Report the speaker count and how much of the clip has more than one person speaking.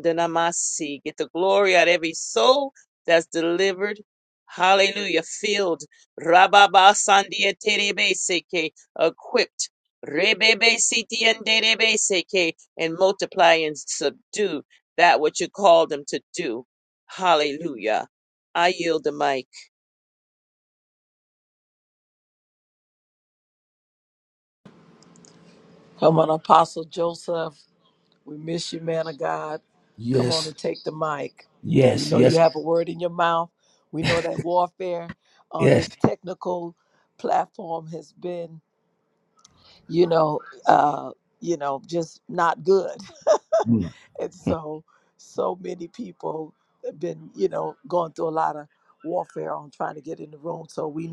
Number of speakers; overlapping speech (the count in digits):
3, about 2%